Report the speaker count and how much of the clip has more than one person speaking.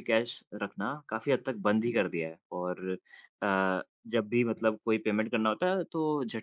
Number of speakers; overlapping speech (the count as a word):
one, no overlap